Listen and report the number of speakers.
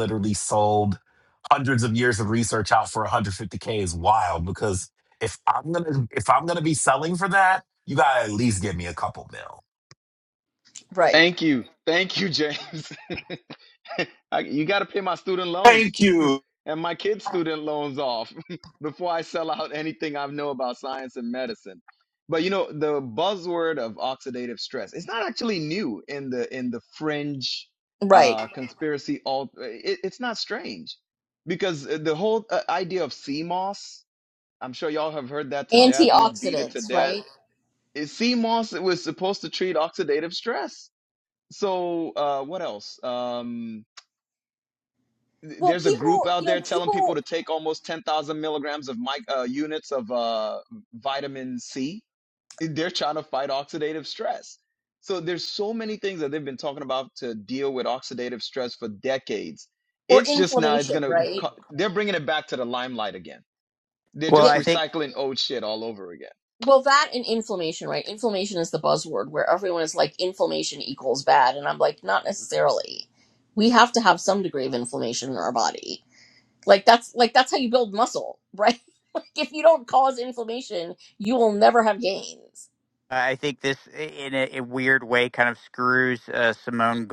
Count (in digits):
4